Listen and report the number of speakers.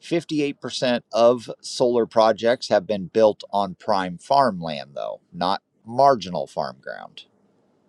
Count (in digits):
1